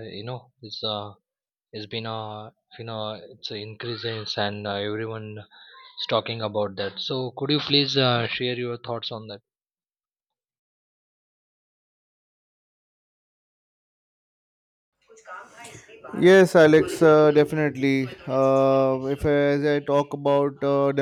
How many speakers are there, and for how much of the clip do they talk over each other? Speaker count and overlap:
2, no overlap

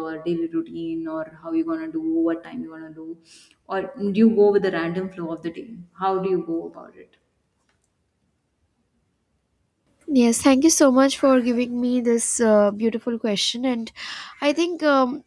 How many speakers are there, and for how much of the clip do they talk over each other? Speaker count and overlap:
2, no overlap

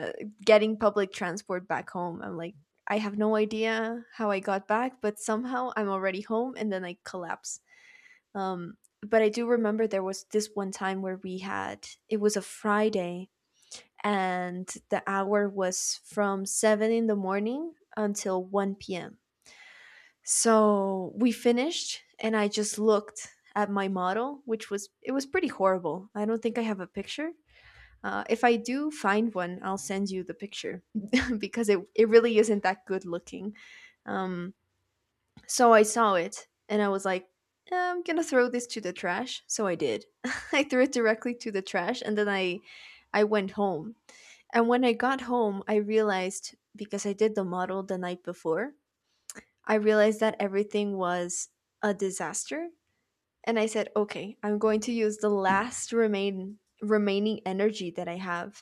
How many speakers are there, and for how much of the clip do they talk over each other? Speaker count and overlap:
1, no overlap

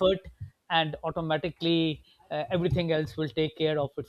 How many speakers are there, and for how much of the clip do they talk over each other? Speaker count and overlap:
1, no overlap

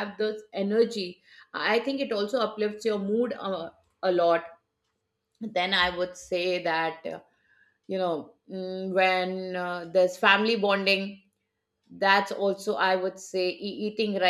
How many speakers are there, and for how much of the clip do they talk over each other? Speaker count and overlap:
1, no overlap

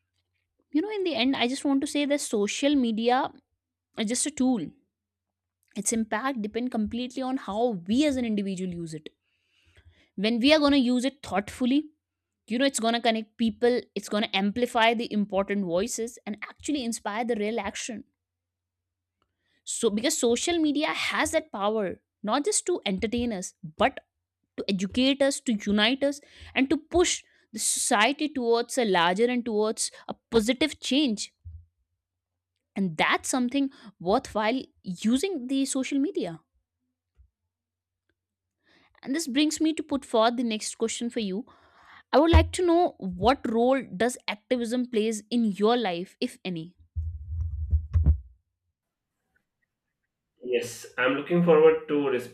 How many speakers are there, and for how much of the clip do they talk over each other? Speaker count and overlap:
2, no overlap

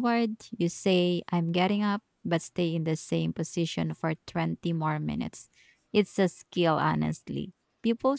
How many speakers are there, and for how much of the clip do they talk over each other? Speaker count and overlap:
1, no overlap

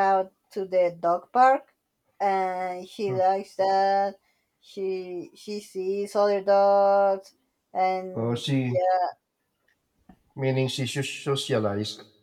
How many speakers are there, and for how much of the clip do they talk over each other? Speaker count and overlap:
2, about 6%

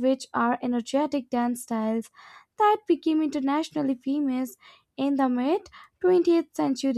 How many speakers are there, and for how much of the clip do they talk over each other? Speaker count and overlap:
1, no overlap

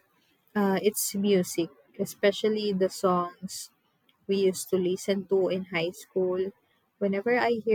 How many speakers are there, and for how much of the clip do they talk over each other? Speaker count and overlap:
1, no overlap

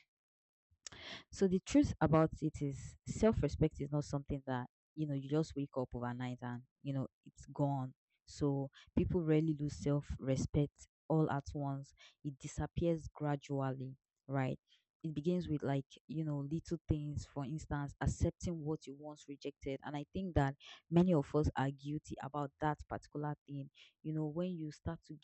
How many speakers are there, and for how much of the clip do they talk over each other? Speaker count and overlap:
1, no overlap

